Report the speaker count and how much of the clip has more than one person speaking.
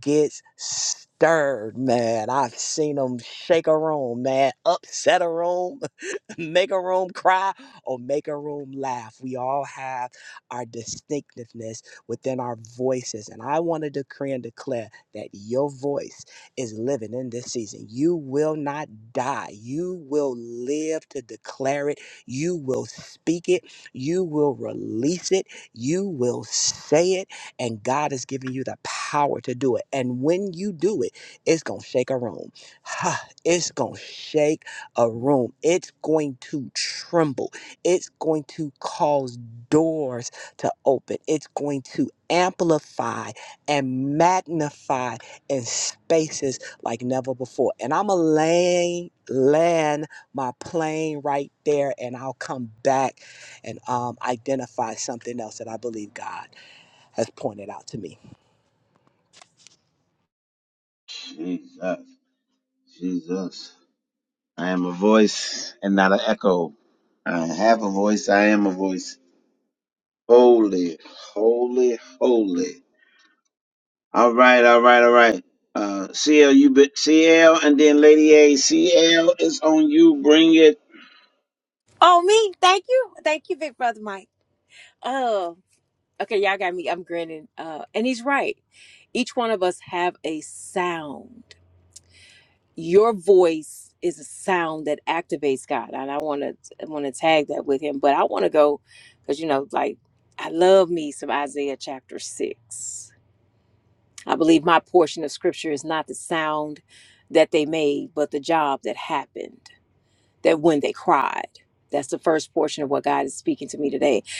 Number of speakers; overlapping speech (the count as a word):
three, no overlap